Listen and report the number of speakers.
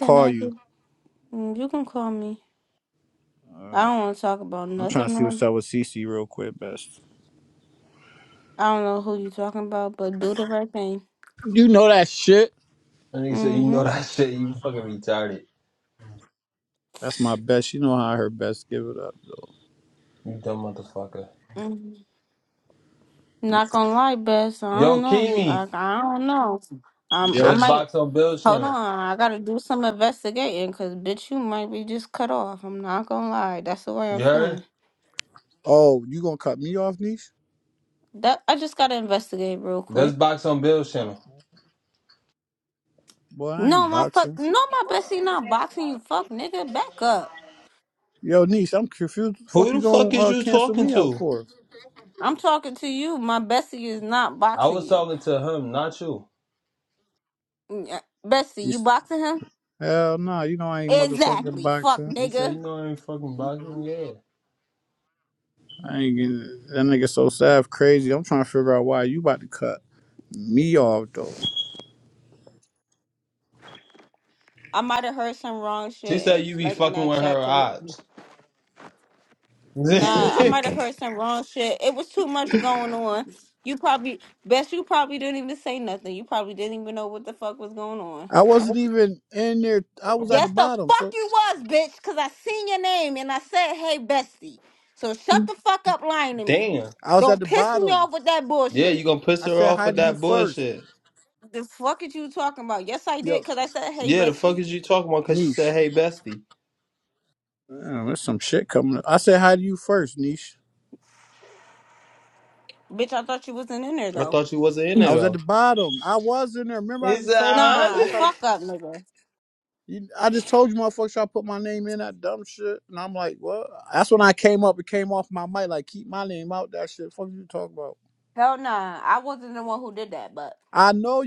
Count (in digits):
3